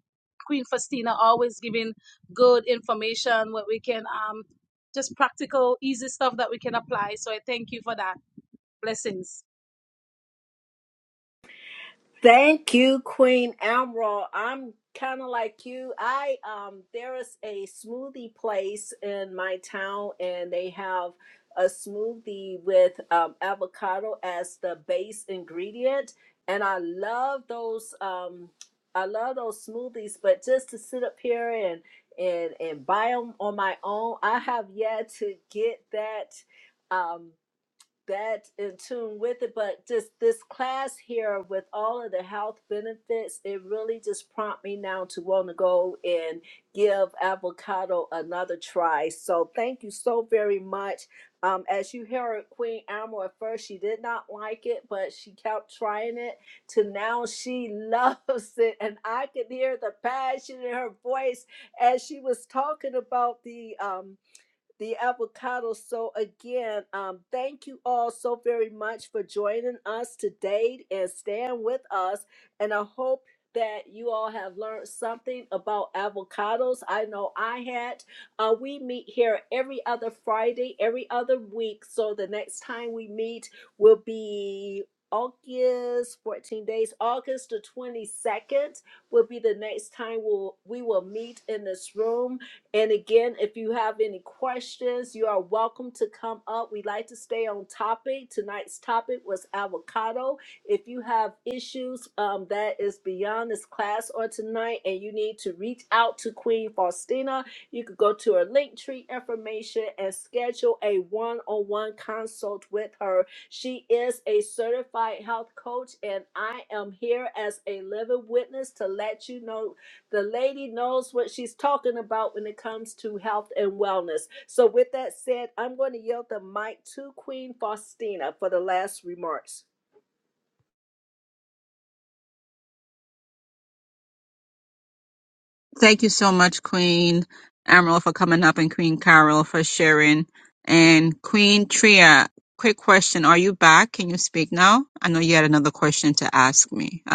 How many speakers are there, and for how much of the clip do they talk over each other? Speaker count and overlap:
3, no overlap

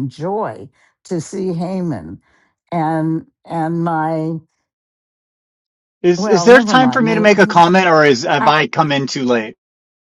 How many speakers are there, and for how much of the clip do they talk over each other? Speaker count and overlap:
2, about 14%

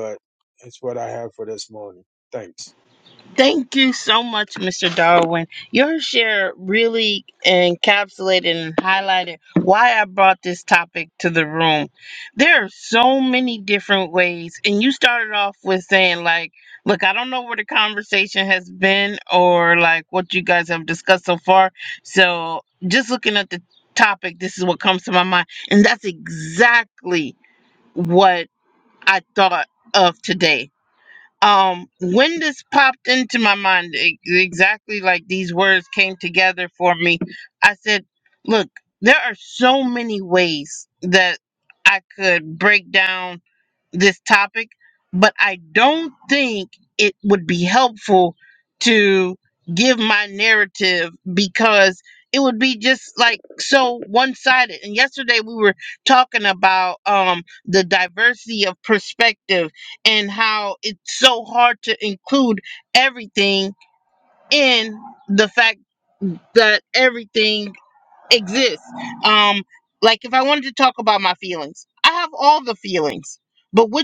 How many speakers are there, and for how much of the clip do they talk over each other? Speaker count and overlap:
2, no overlap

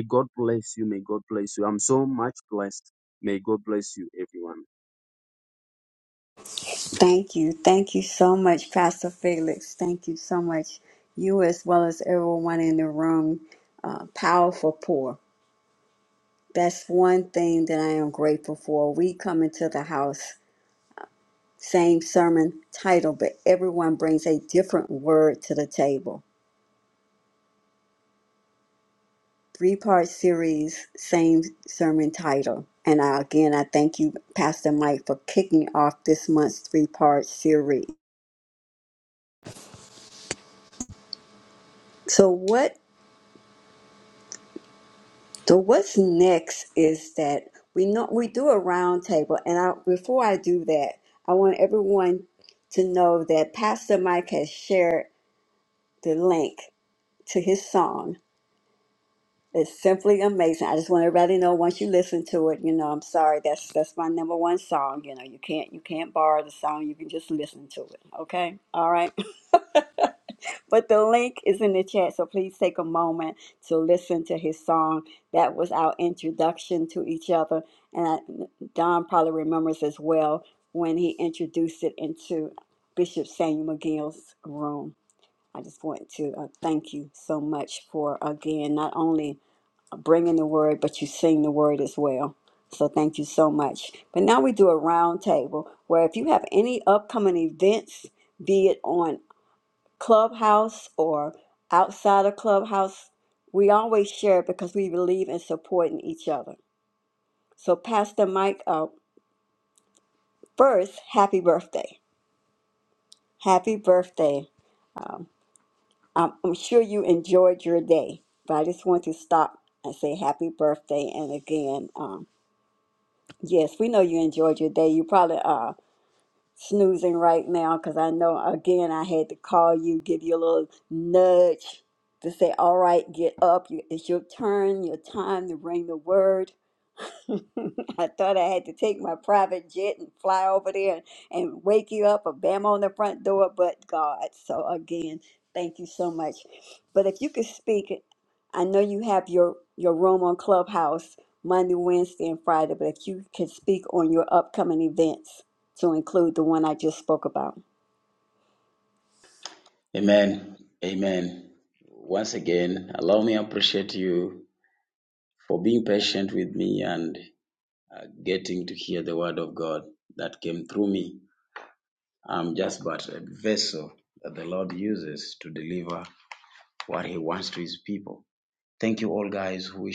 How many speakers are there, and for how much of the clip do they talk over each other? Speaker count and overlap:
3, no overlap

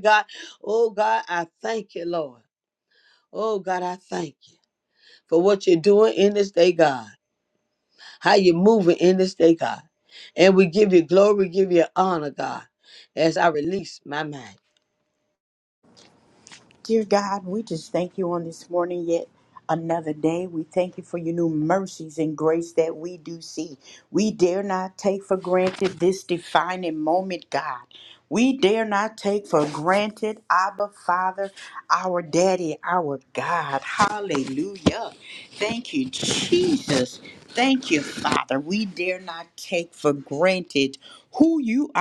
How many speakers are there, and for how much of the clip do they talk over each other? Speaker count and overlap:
2, no overlap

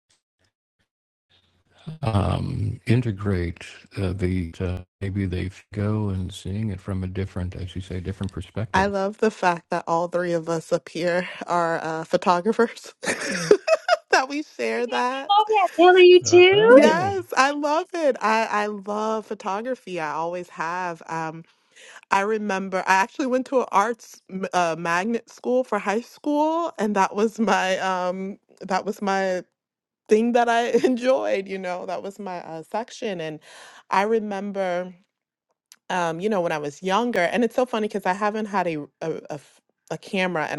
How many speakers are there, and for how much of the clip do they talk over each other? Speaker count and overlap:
3, about 2%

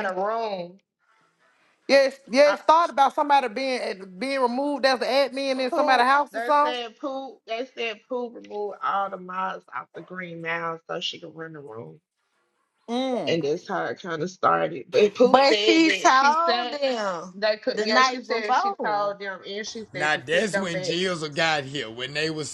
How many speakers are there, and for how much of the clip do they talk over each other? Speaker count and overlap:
4, about 24%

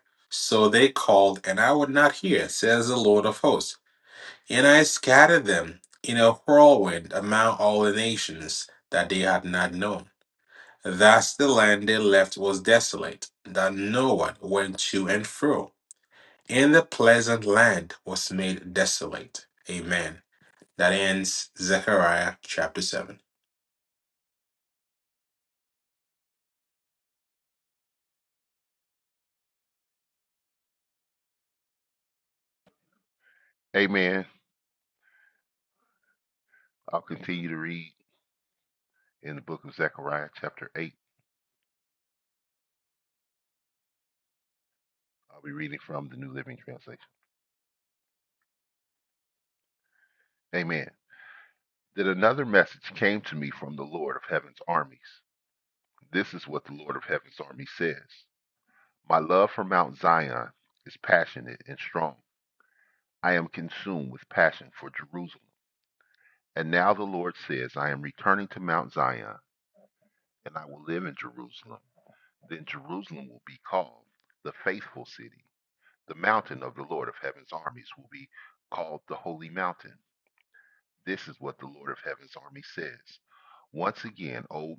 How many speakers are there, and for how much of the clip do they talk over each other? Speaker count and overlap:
2, no overlap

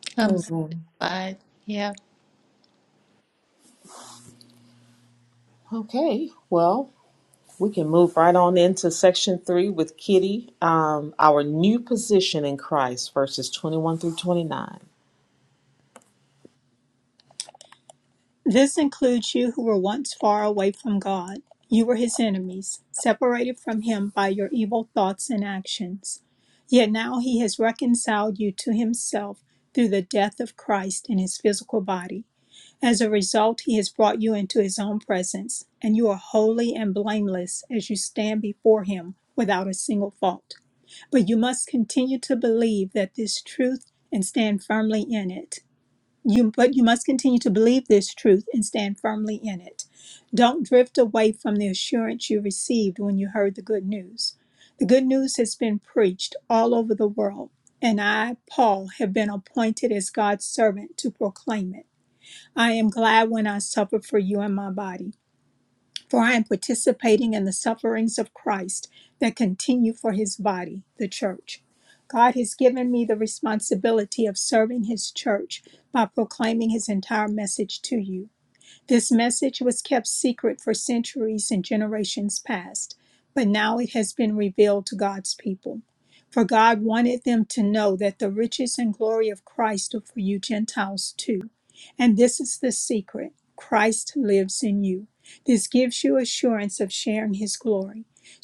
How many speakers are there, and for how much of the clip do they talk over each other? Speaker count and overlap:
3, under 1%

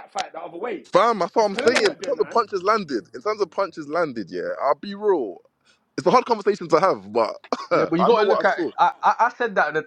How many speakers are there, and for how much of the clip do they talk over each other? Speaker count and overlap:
3, about 20%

